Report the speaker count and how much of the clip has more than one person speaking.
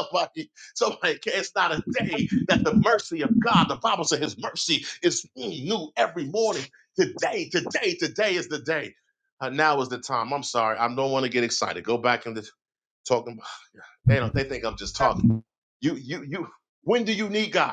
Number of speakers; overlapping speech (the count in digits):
1, no overlap